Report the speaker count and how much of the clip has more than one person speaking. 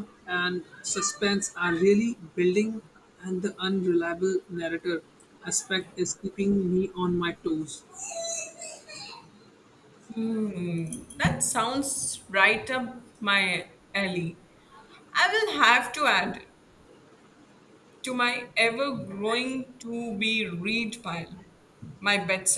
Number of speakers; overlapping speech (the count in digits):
2, no overlap